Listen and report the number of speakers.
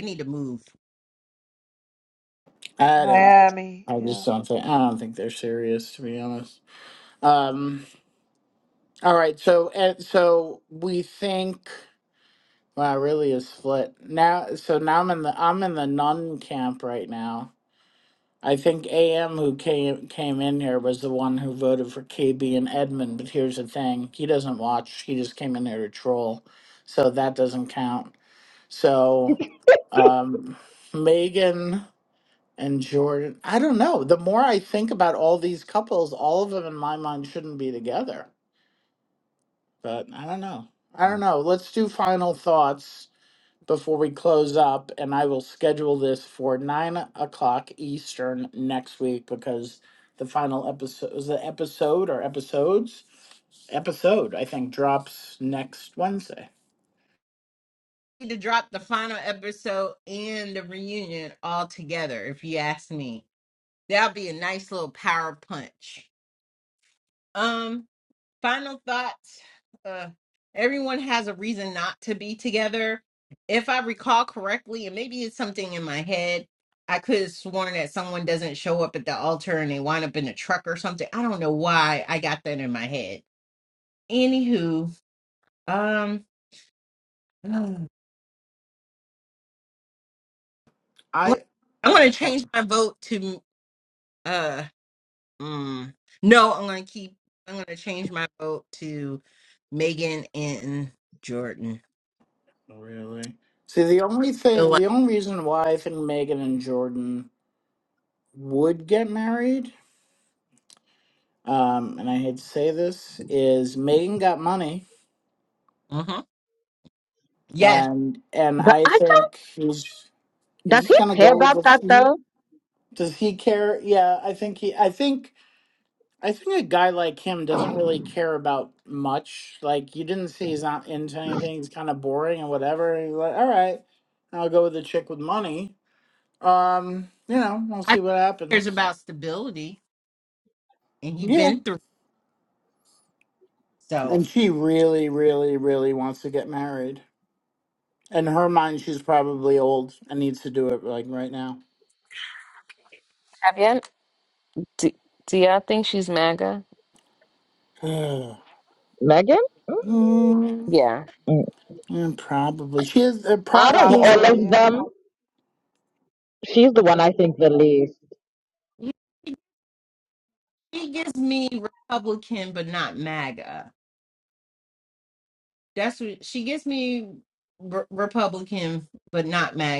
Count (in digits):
5